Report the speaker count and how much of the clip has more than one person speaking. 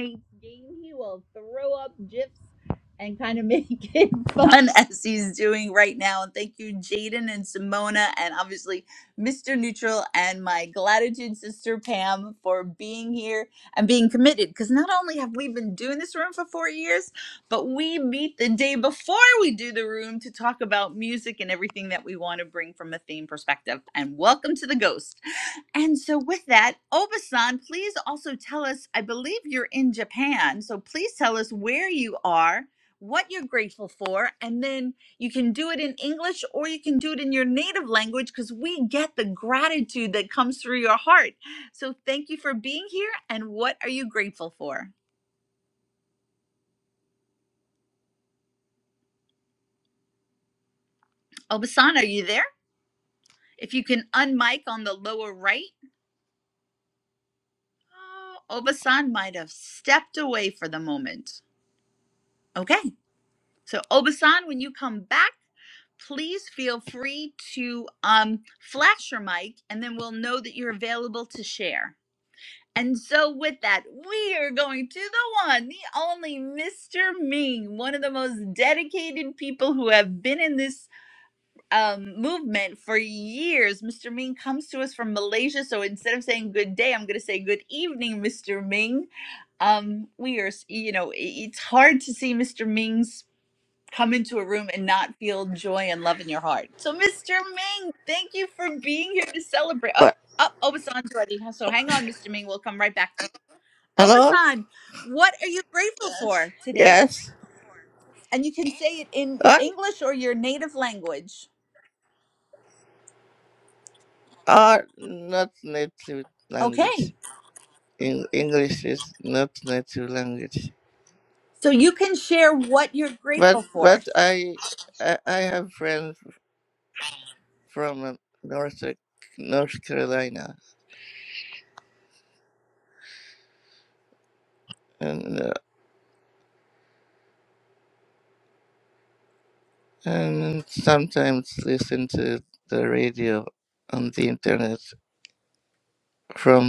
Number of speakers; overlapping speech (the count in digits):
2, about 1%